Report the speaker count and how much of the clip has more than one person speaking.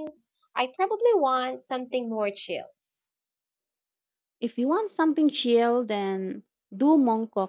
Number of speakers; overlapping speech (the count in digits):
2, no overlap